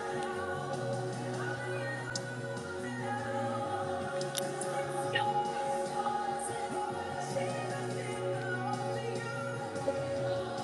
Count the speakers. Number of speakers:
0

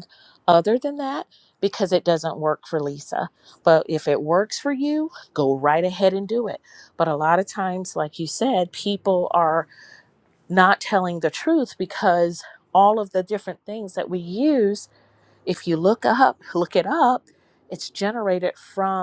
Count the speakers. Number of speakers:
1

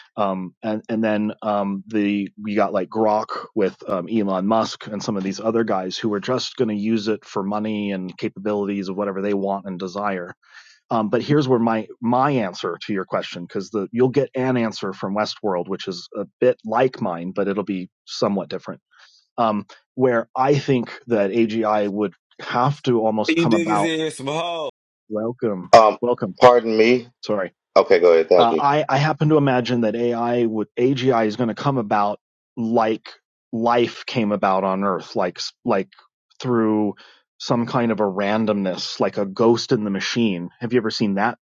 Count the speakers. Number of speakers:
3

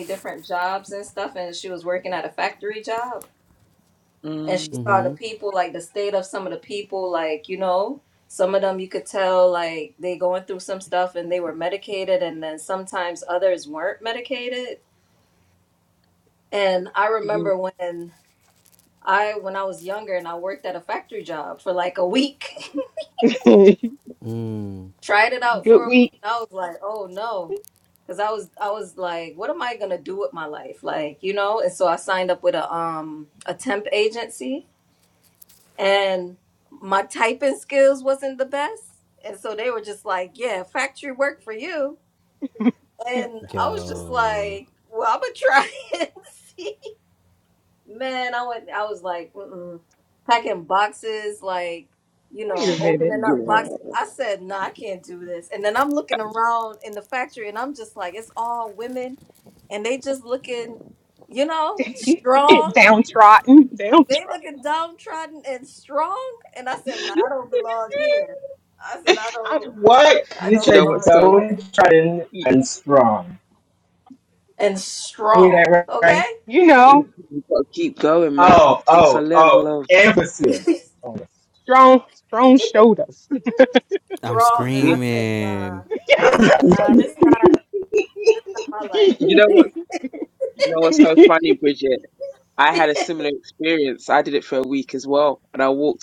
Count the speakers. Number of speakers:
5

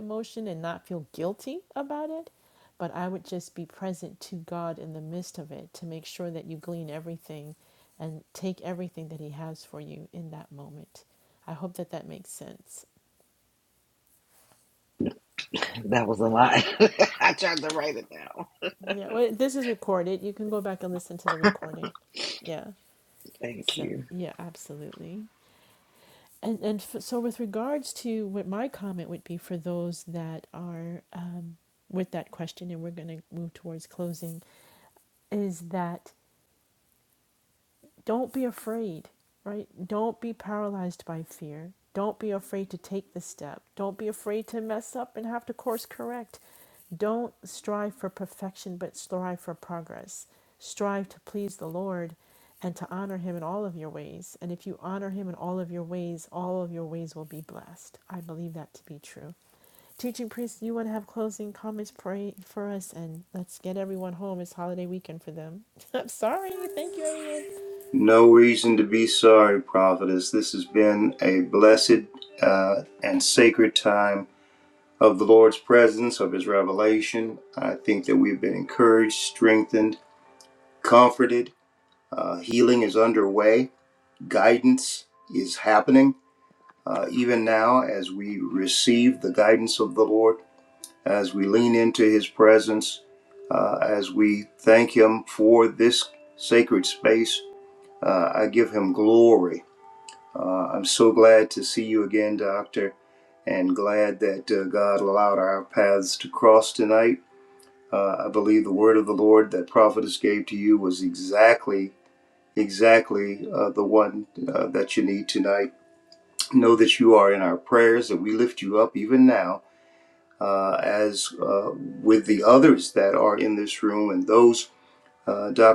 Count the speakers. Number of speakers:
3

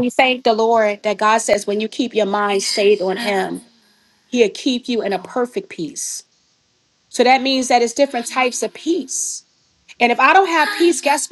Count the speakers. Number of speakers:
1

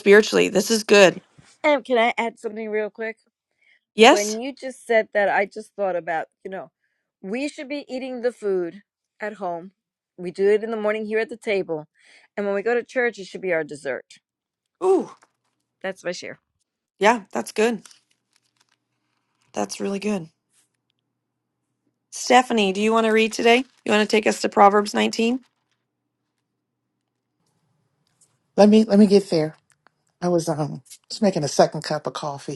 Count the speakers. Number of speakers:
3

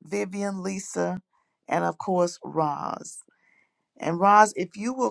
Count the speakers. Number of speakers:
1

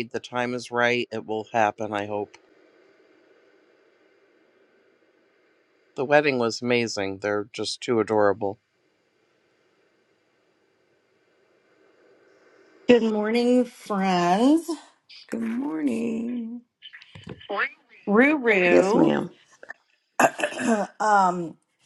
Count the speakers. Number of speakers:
3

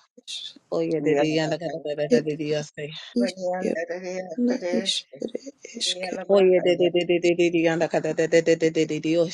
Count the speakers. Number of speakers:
3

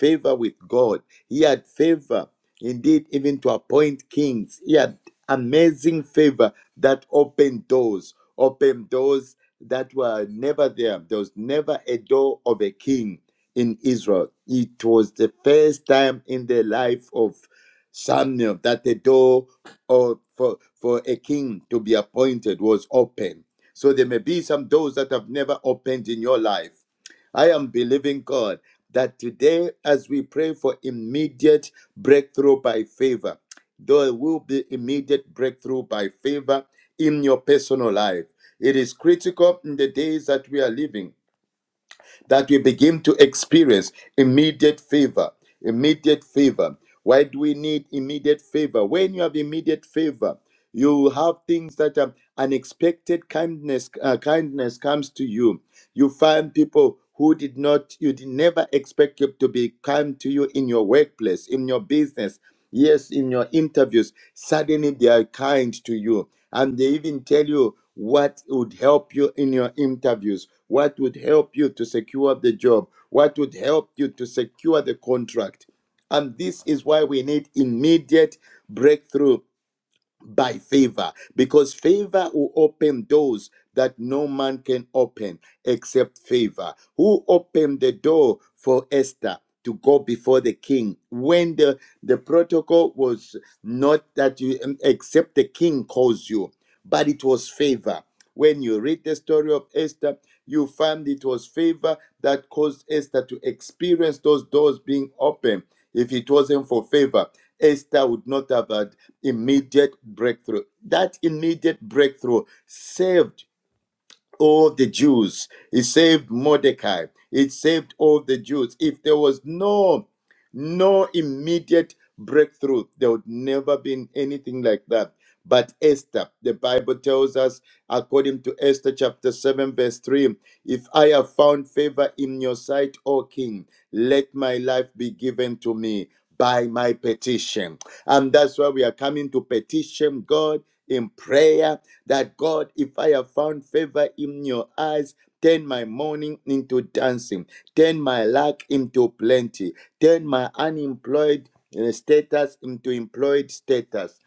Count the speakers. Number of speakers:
1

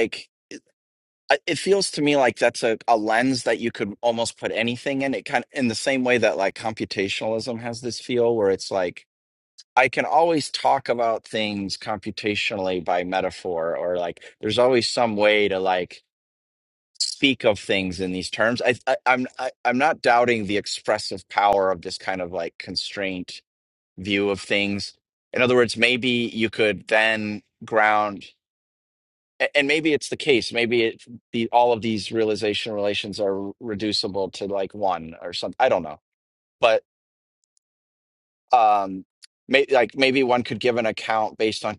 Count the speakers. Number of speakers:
1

